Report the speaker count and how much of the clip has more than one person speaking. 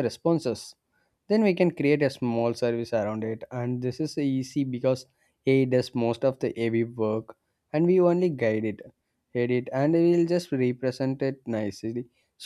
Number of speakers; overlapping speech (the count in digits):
1, no overlap